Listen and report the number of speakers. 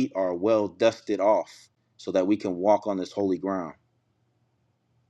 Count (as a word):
one